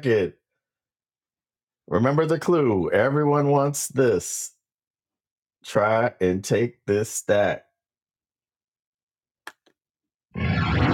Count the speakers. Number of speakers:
1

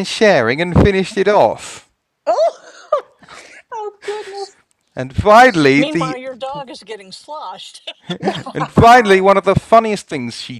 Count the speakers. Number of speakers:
3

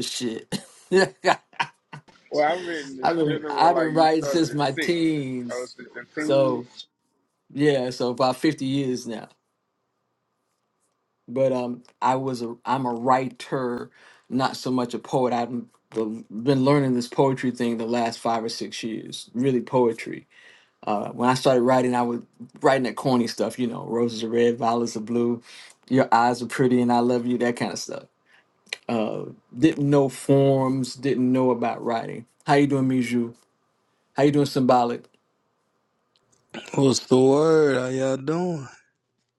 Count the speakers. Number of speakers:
3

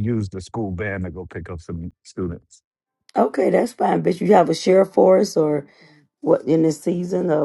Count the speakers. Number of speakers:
2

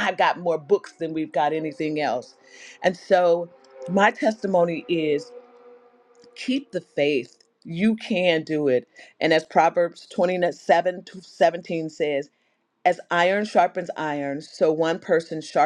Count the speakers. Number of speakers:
1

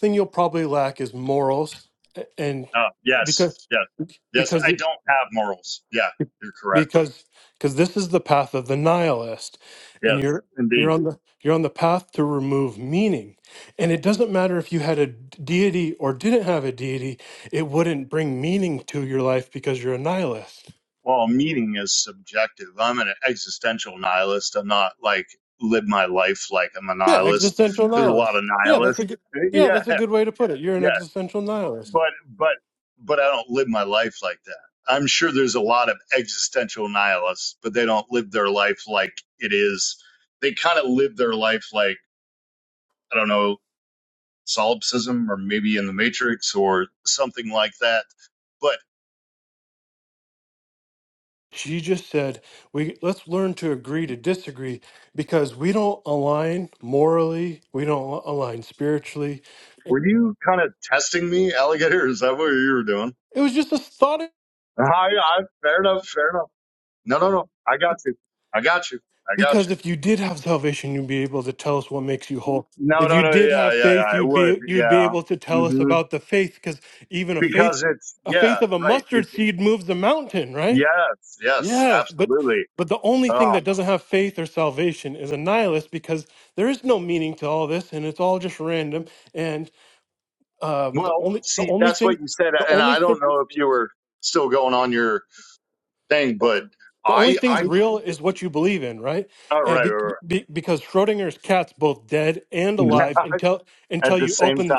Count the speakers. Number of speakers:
2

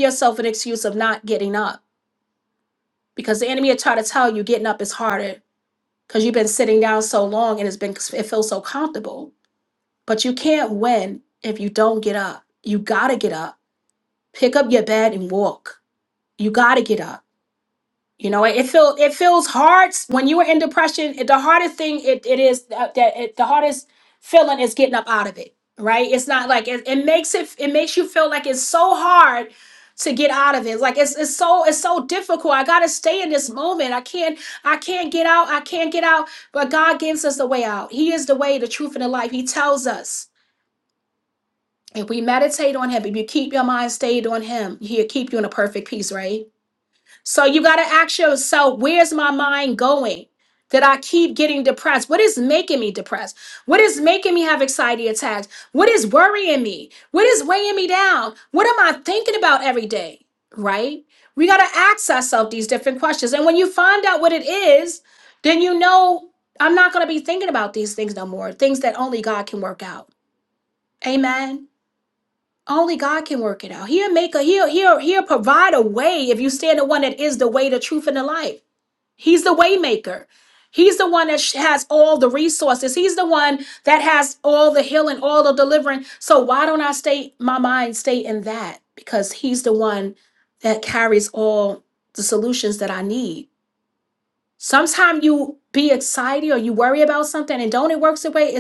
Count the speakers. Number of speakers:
1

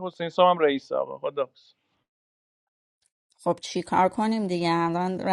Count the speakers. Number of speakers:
2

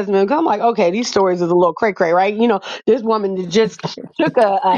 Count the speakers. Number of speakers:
1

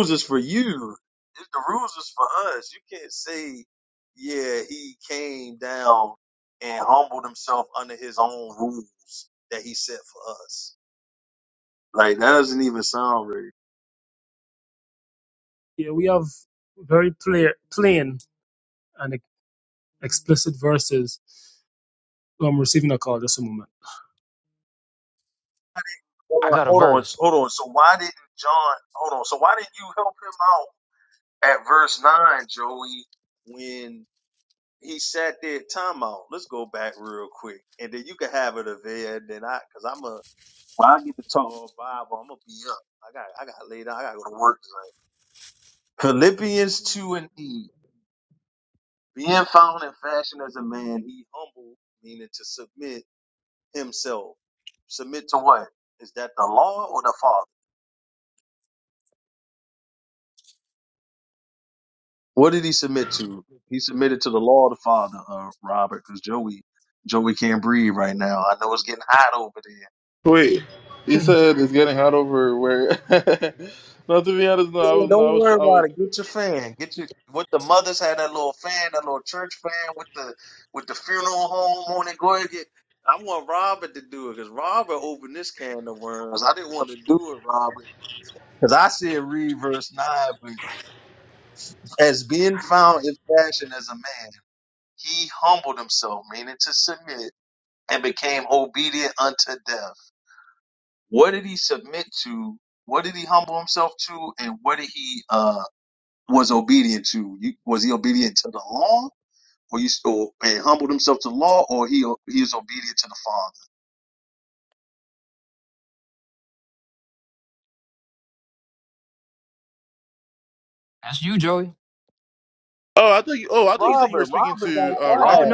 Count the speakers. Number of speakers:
4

